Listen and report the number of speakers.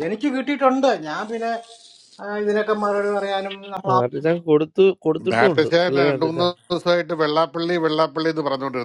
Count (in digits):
3